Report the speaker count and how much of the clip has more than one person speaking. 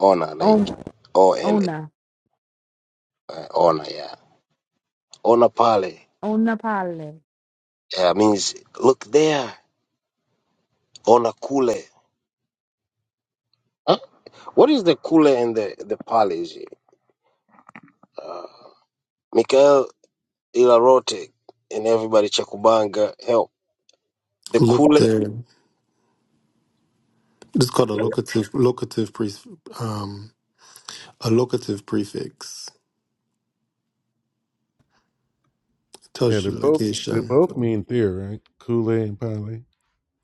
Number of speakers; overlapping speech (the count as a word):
four, about 5%